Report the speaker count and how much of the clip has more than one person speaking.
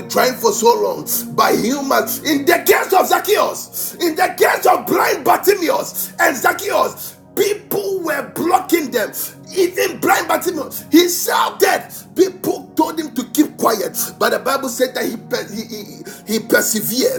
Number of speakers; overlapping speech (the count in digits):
1, no overlap